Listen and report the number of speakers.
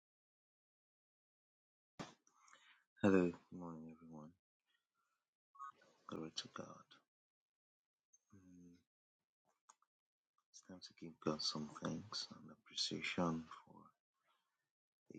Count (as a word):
one